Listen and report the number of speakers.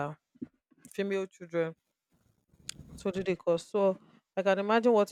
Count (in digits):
1